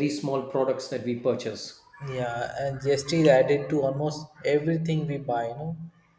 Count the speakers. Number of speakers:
two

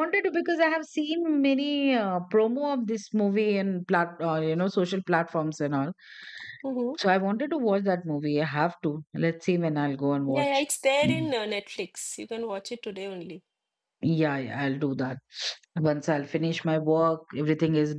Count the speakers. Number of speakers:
two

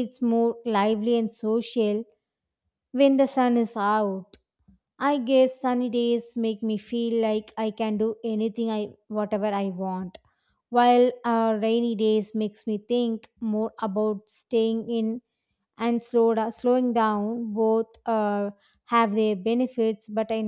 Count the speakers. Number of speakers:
one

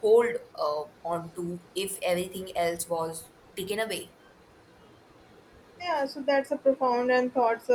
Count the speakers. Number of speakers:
two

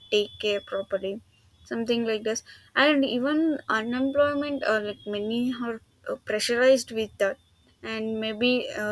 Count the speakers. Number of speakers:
one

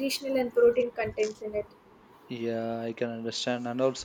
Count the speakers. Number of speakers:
two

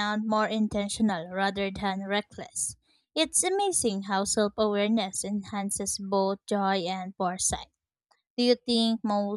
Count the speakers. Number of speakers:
one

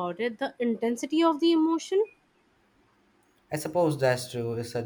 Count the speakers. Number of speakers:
two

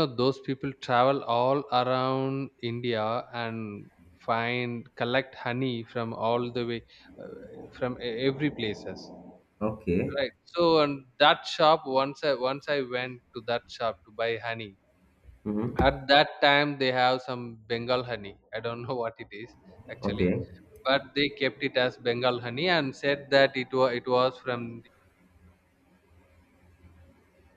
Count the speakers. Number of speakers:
two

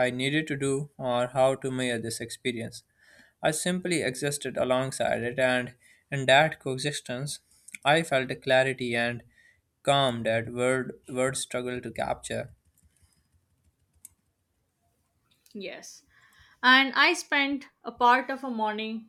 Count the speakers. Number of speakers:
two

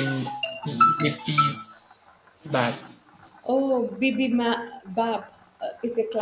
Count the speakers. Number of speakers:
two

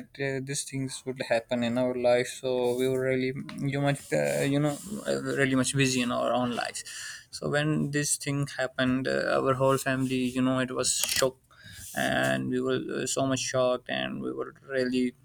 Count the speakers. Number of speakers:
one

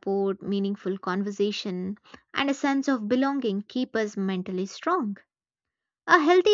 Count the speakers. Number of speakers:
one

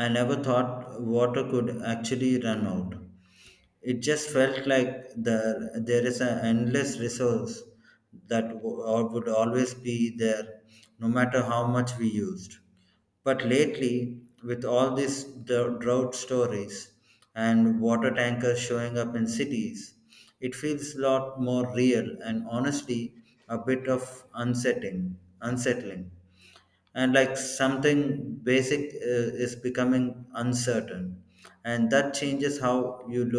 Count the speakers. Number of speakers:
one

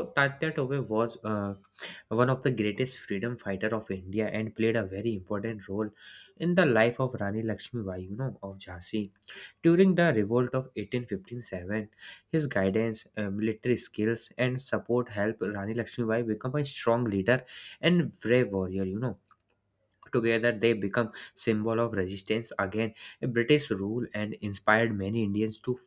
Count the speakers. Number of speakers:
one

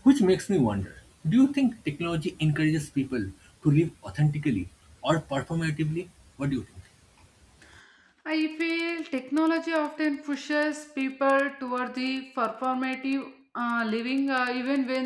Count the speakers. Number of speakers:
two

